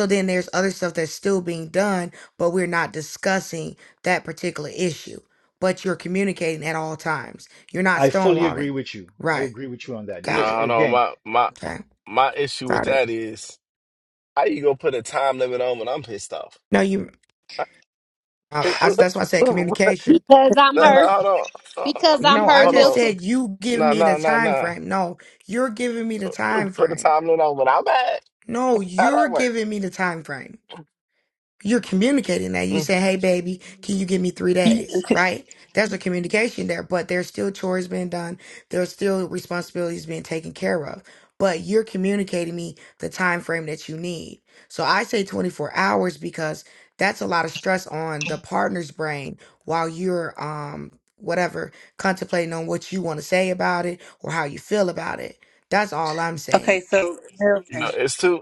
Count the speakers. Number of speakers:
5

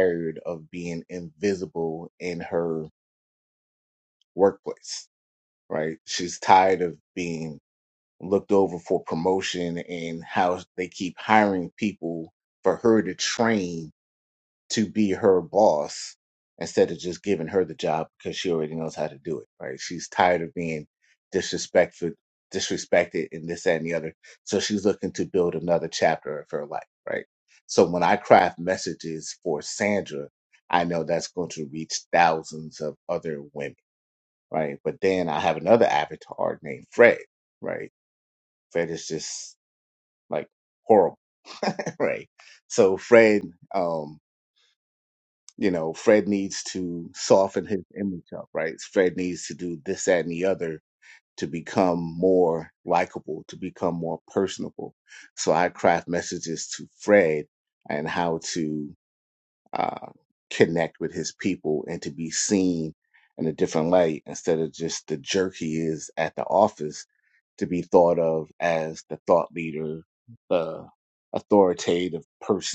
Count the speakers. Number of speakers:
1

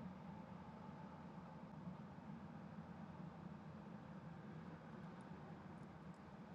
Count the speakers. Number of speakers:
0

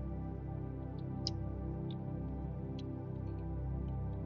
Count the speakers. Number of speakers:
0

